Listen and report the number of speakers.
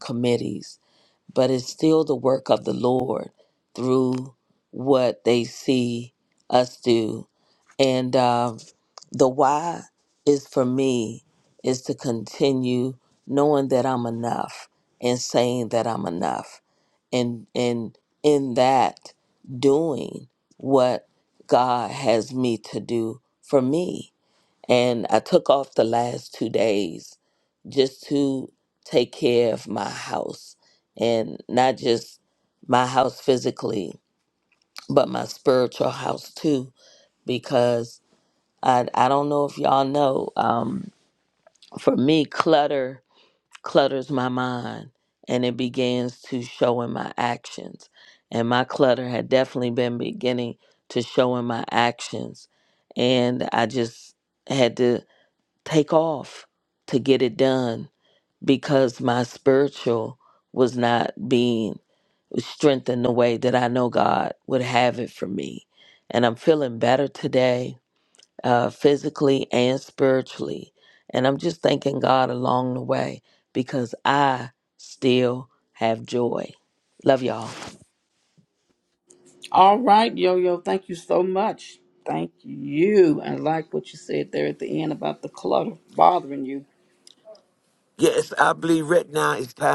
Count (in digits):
3